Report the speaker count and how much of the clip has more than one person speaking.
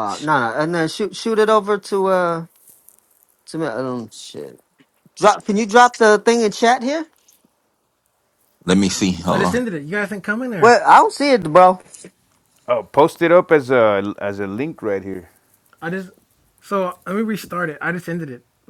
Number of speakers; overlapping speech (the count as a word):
four, about 3%